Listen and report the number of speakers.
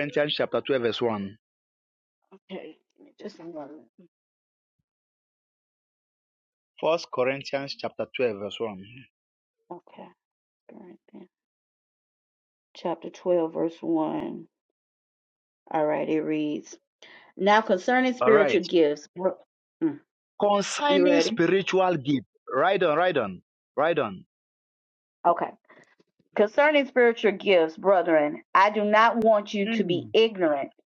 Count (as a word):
two